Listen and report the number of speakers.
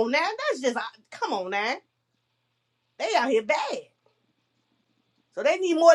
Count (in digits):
1